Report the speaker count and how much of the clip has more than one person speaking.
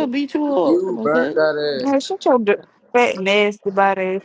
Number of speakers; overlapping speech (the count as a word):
three, about 22%